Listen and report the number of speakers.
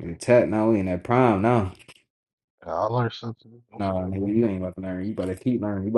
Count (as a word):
two